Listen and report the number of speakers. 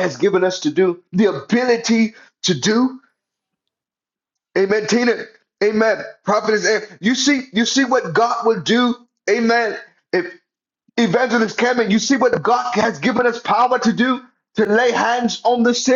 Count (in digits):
1